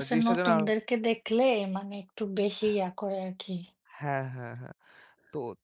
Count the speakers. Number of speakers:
2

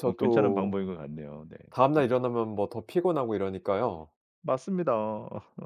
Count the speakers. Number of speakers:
2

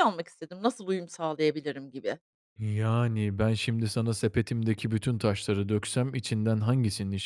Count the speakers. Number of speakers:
2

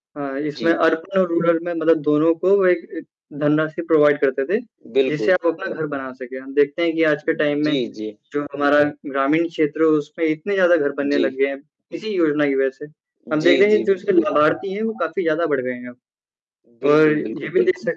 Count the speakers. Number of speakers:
2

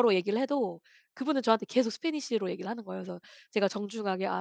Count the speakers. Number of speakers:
1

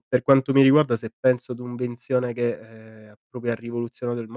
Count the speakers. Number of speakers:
1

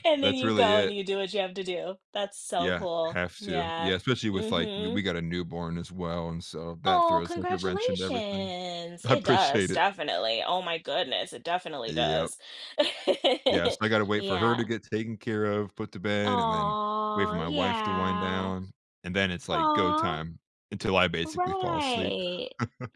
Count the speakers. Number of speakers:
2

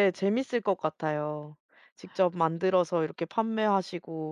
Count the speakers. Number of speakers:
1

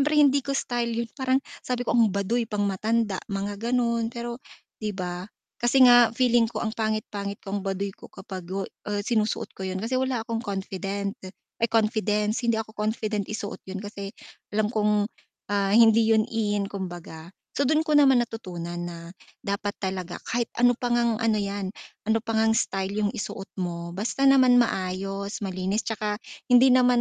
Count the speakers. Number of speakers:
1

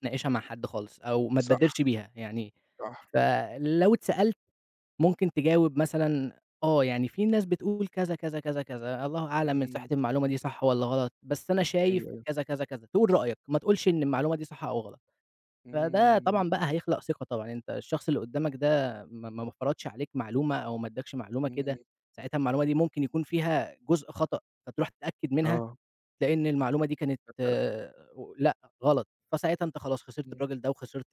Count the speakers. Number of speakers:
2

